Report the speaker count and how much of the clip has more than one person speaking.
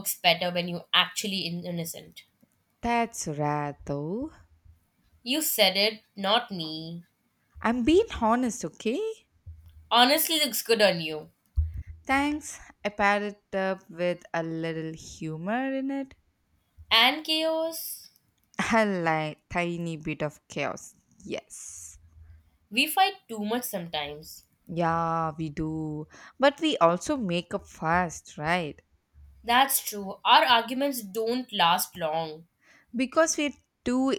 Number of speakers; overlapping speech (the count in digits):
2, no overlap